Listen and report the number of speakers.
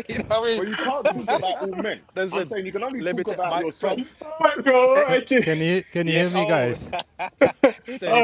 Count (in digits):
4